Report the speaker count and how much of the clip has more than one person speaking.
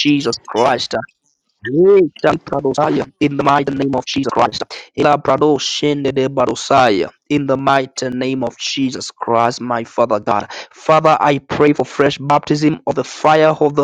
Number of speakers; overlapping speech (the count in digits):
1, no overlap